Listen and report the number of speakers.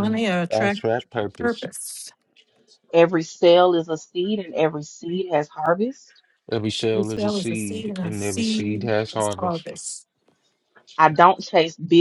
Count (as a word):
three